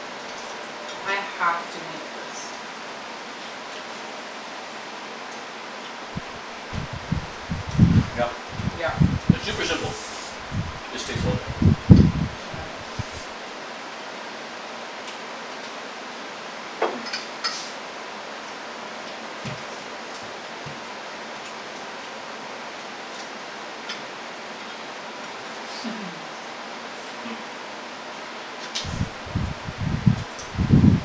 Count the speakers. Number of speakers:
2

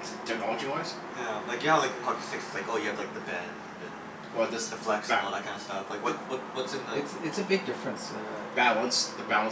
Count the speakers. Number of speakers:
3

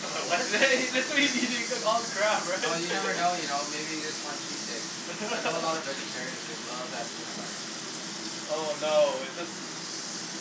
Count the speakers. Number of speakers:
3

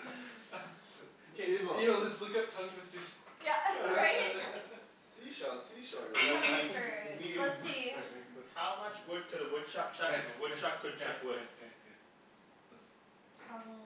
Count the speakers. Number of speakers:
4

